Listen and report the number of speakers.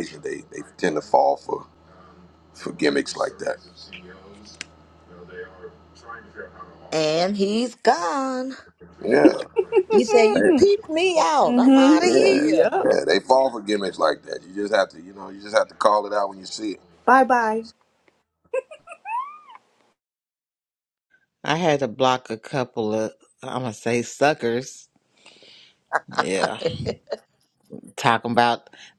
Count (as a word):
four